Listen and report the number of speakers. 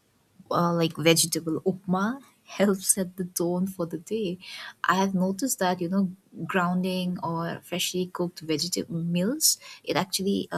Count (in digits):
1